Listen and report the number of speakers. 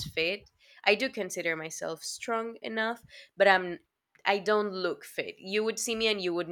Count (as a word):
one